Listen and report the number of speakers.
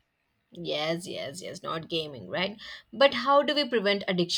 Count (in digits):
1